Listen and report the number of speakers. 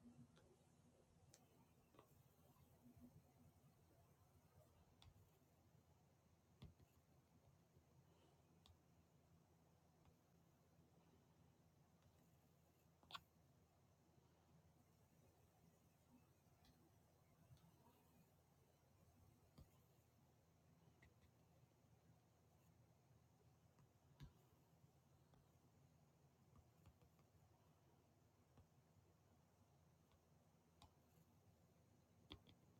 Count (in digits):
0